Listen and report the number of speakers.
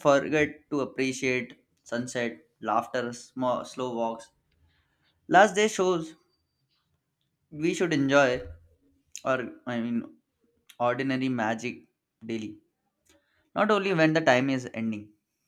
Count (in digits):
1